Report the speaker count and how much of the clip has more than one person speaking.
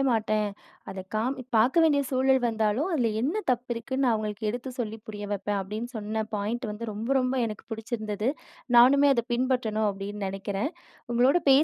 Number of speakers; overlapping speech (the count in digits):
1, no overlap